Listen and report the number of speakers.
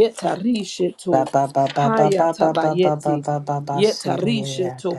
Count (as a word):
two